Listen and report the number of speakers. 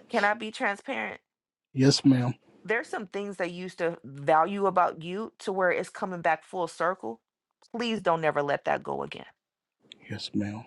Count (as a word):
two